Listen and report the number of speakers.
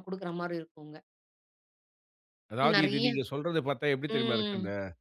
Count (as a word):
two